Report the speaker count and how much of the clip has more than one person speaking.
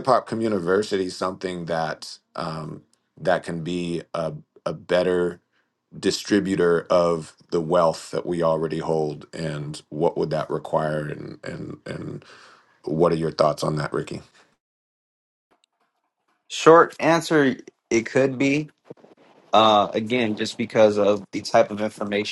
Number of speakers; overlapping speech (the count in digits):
2, no overlap